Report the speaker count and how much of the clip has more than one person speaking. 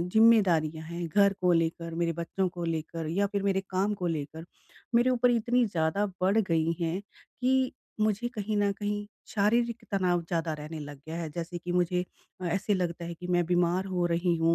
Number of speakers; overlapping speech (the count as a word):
one, no overlap